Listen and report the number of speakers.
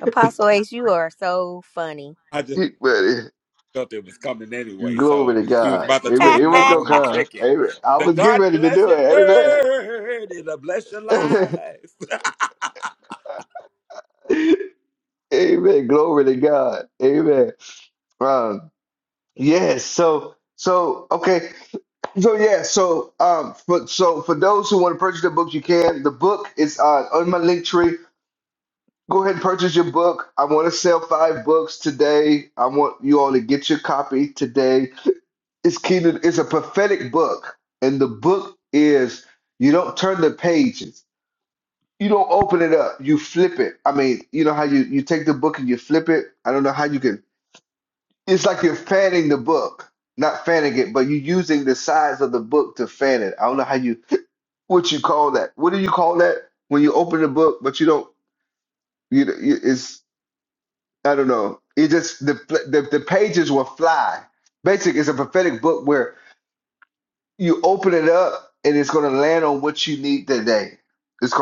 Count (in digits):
3